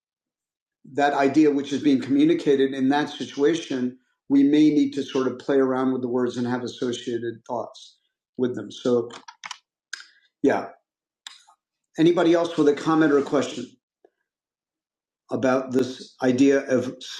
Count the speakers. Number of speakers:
1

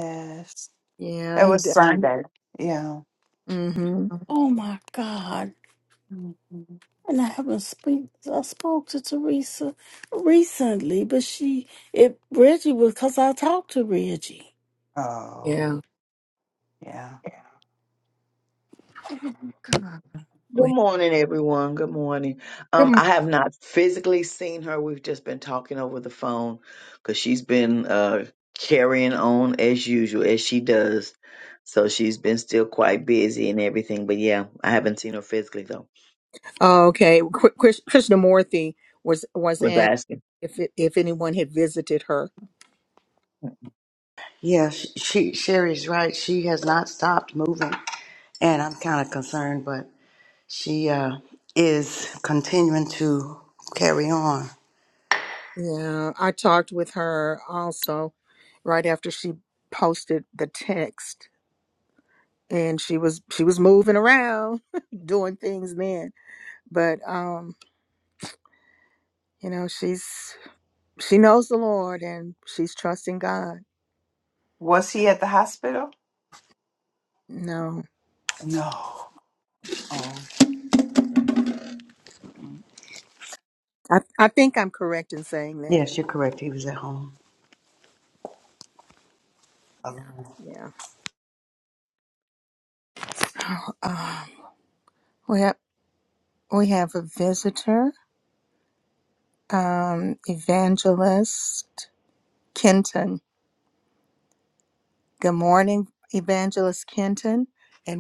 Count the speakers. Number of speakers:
5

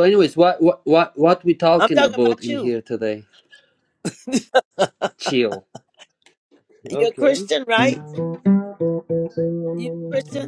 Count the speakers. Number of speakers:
2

